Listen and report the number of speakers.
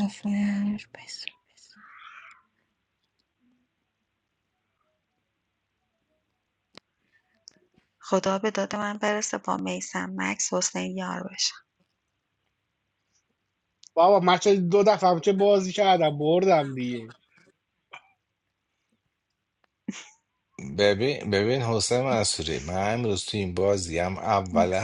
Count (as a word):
four